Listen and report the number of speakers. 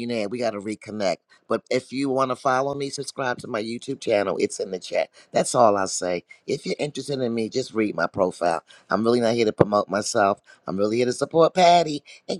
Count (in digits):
1